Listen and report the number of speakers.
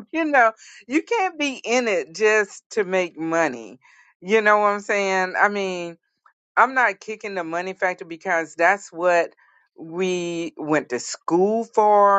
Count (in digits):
1